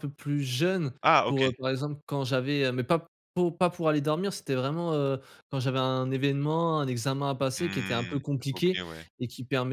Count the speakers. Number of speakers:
2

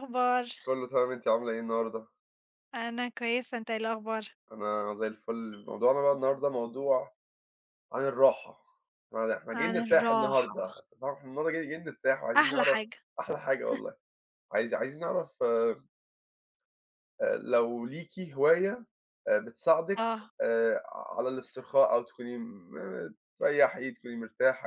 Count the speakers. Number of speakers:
2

